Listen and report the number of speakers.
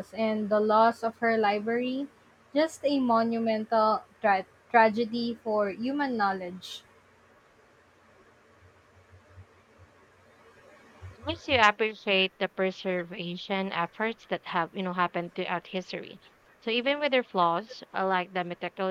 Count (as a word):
two